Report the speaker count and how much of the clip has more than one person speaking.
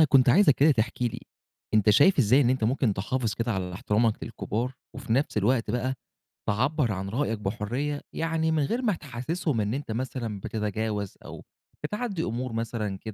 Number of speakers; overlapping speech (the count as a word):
one, no overlap